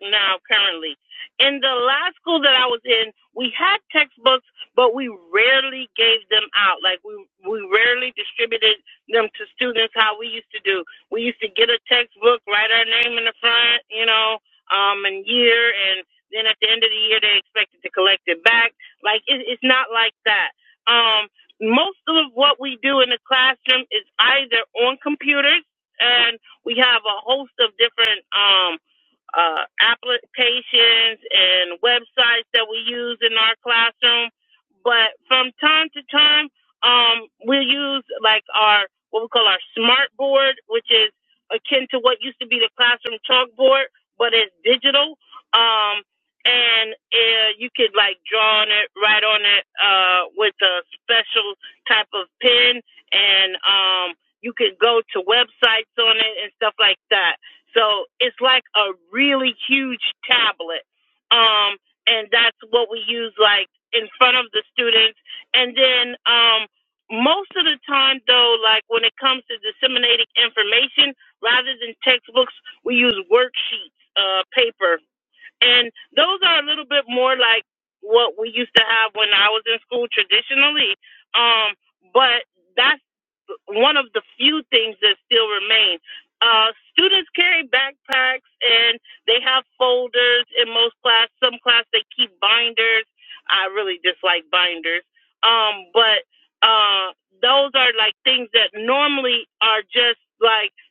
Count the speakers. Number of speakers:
1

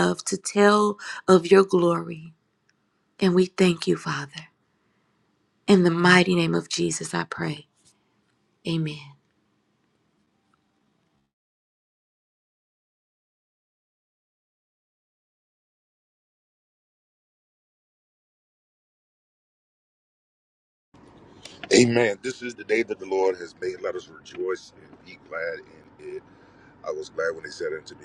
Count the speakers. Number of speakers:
2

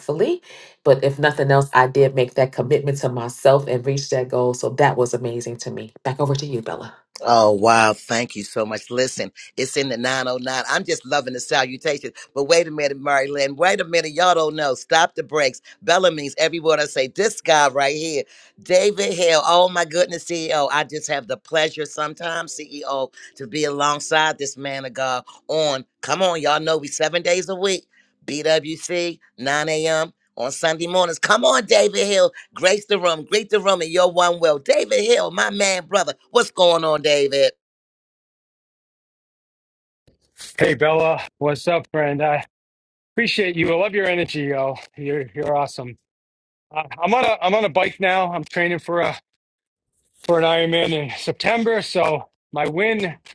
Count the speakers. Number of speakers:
3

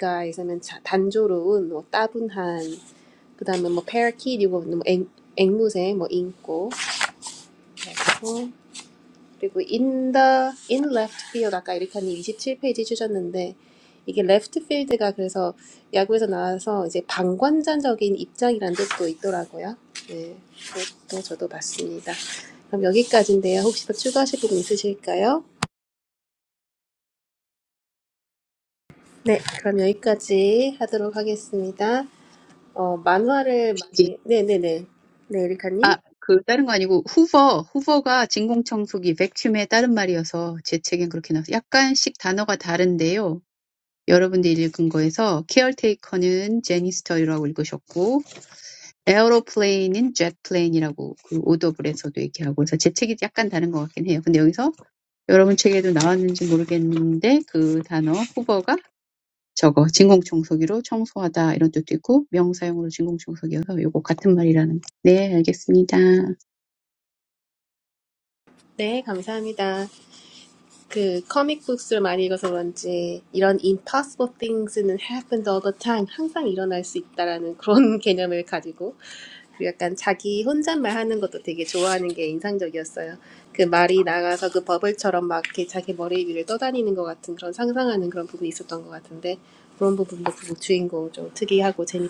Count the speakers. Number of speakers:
2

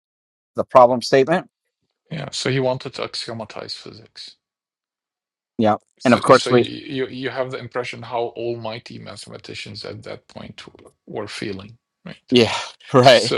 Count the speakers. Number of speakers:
2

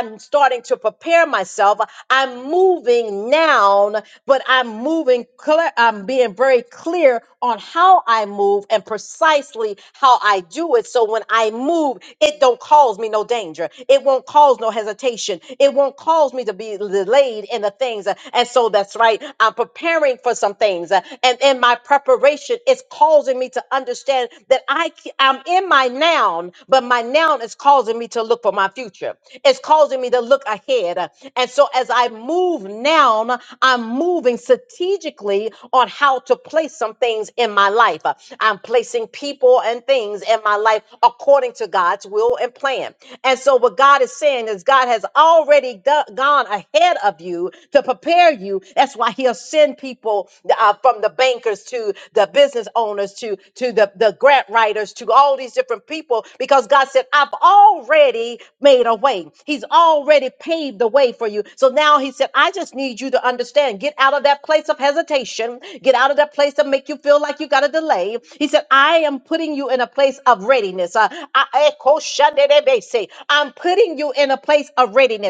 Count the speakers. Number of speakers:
1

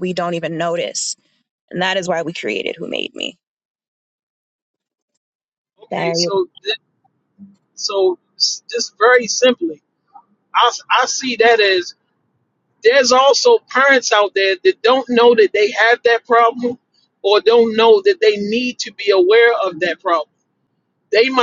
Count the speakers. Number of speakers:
2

